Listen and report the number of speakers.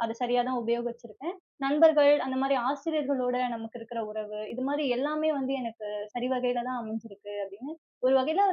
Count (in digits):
1